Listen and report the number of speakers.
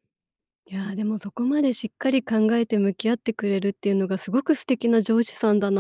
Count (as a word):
one